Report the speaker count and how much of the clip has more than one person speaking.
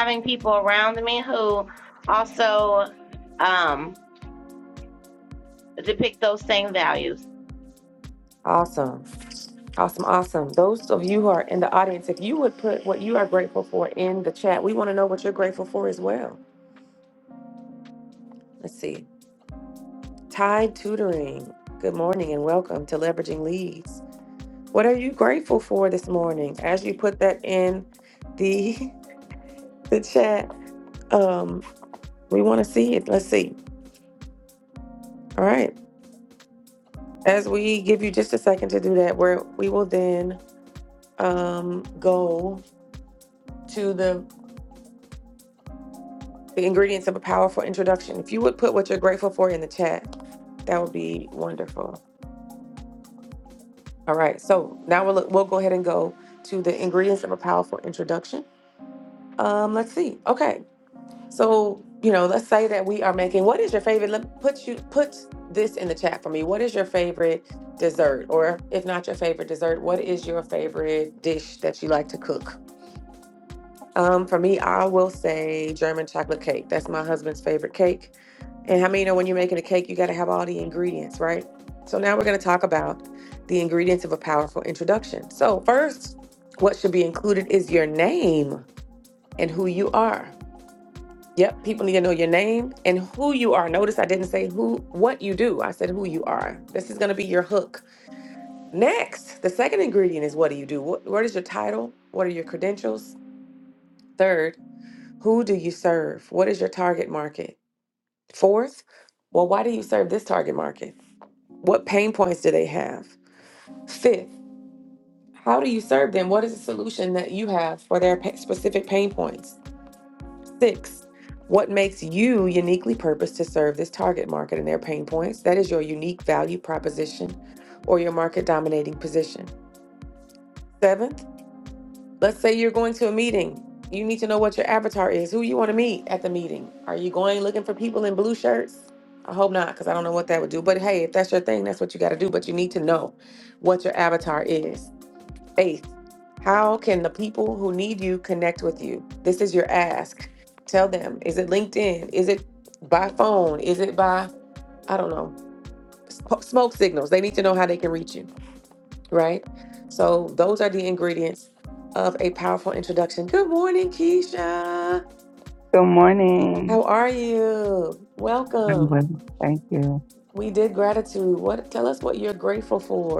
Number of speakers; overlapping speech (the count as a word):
three, under 1%